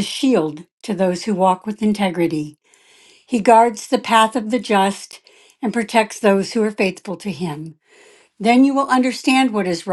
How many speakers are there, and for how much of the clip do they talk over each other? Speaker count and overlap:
1, no overlap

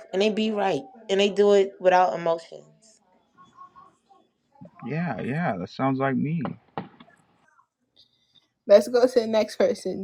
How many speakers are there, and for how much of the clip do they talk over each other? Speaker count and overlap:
3, no overlap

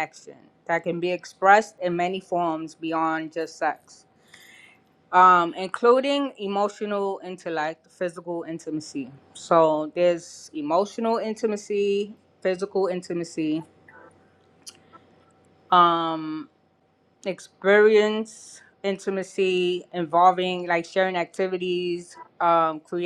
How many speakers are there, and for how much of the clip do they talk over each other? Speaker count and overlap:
1, no overlap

